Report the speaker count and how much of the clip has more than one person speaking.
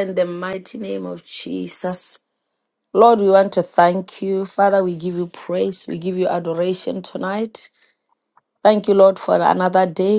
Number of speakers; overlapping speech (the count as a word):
one, no overlap